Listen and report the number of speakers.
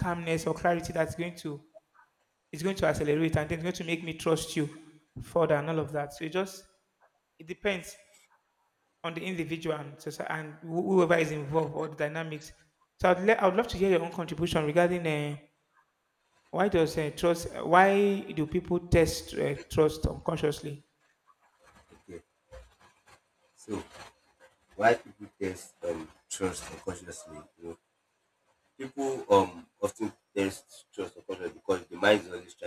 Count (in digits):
2